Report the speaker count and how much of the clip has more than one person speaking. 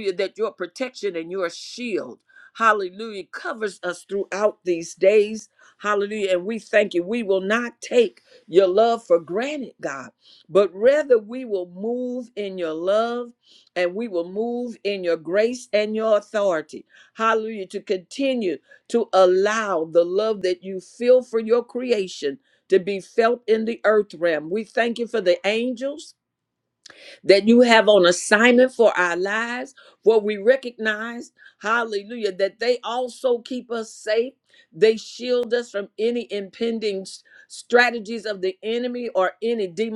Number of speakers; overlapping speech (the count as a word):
one, no overlap